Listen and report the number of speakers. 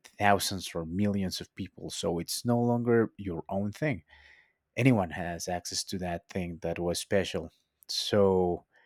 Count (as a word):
one